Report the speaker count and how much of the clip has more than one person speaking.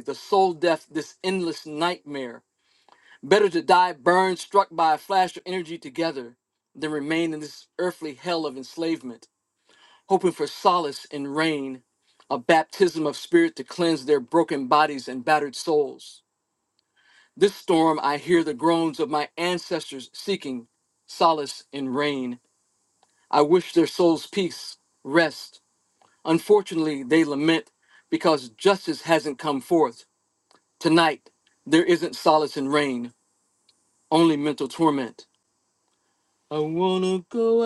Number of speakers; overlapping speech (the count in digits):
1, no overlap